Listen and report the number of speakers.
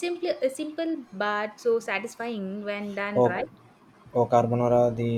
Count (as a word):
two